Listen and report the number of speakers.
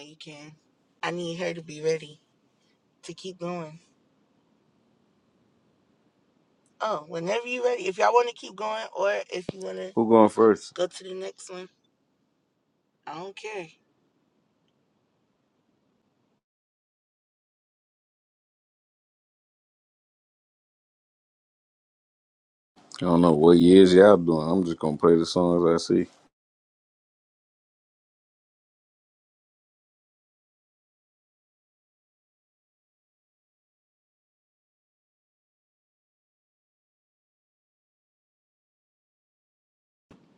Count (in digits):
2